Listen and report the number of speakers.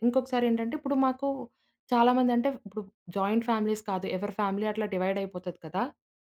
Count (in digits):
1